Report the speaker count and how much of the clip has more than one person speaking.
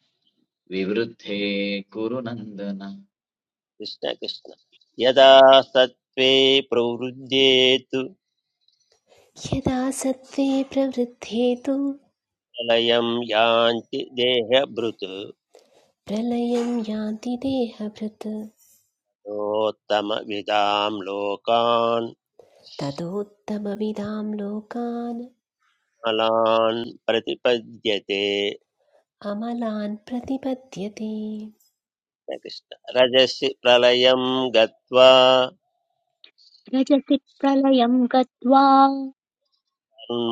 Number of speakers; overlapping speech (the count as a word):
four, no overlap